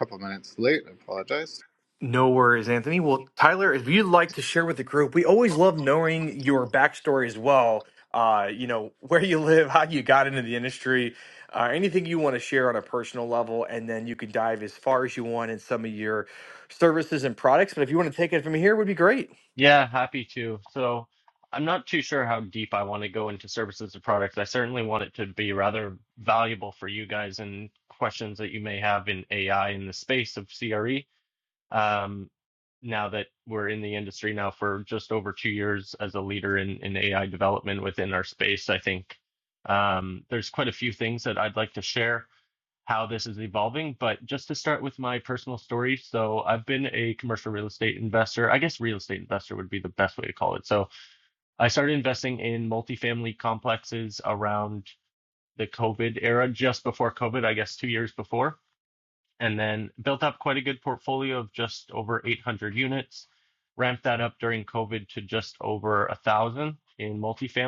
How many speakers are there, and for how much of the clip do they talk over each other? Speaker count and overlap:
3, no overlap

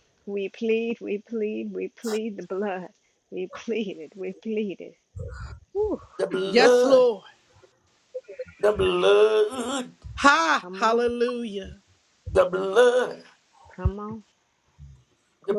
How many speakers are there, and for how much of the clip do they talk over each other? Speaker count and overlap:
3, about 7%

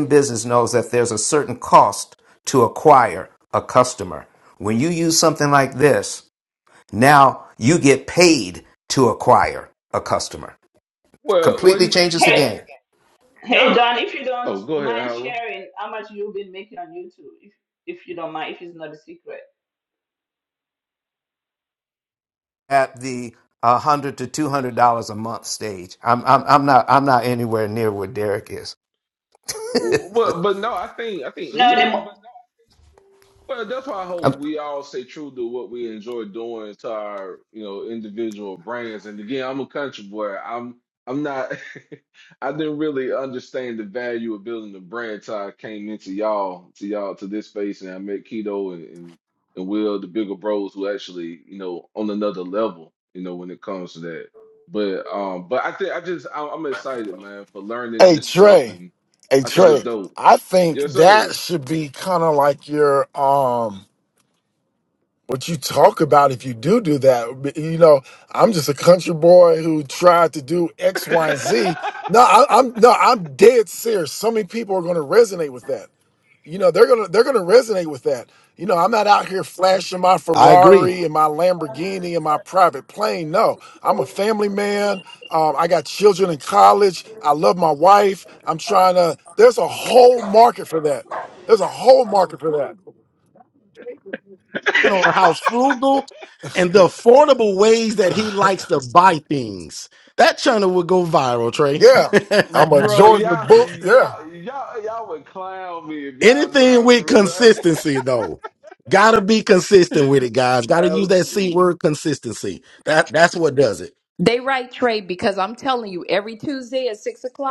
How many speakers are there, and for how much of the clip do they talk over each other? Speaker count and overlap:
6, about 9%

